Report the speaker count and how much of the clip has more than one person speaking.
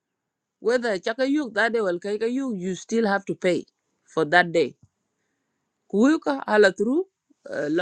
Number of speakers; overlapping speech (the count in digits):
1, no overlap